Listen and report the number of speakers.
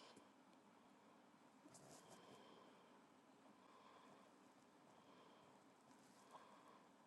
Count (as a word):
zero